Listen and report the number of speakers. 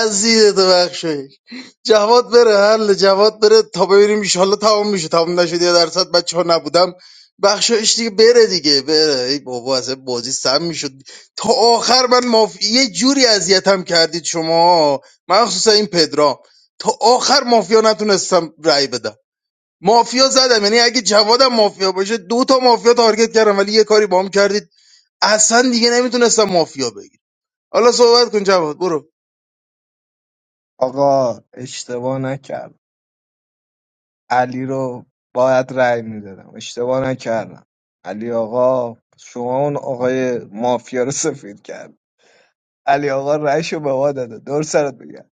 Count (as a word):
two